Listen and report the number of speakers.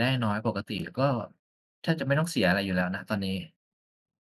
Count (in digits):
1